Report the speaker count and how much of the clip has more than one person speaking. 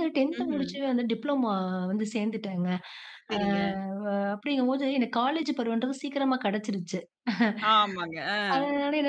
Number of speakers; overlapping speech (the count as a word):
two, about 7%